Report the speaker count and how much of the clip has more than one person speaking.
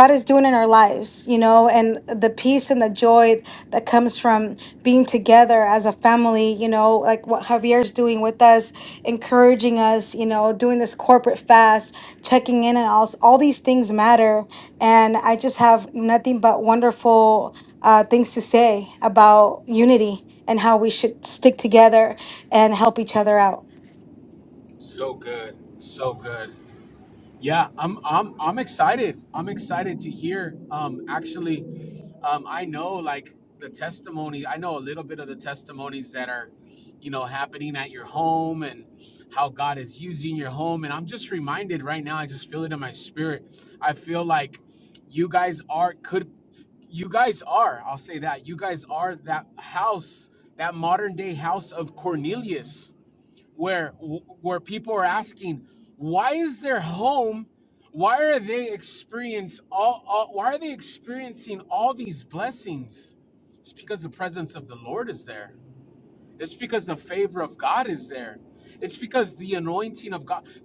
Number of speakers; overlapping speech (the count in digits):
2, no overlap